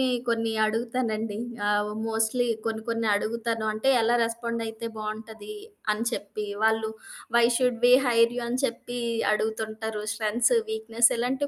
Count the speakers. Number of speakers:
one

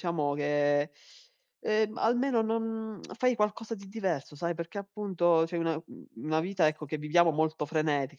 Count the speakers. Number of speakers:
one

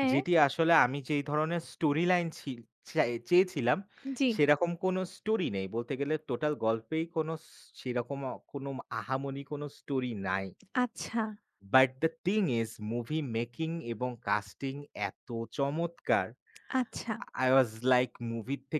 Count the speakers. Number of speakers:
two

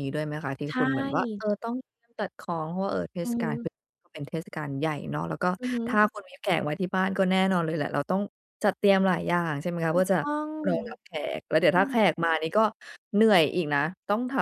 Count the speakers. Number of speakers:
two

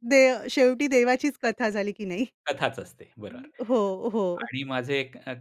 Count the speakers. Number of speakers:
two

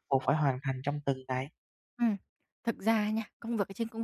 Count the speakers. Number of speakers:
two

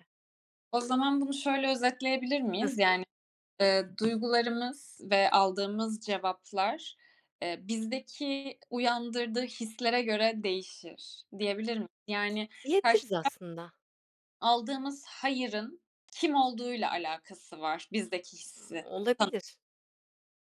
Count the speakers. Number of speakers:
two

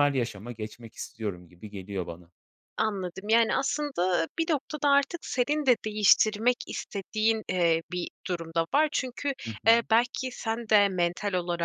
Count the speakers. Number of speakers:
two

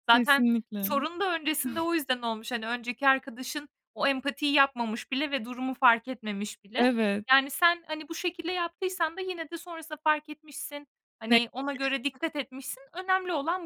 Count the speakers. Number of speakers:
two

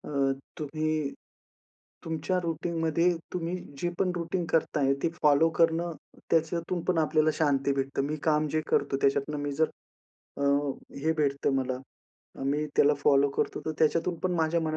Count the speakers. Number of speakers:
one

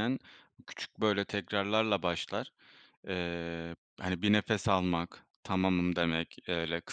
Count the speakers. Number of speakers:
one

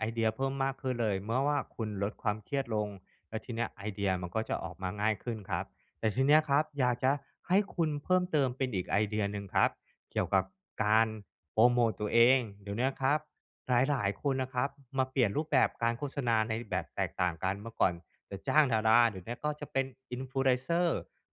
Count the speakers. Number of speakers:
one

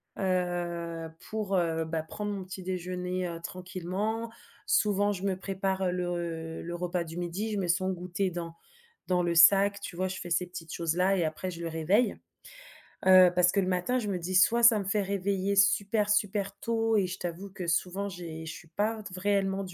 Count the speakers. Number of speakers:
one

